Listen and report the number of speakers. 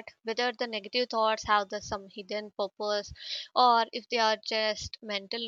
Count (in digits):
1